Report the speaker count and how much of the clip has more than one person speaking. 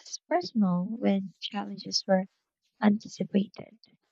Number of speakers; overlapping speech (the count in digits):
1, no overlap